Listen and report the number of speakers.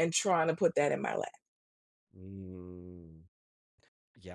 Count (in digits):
2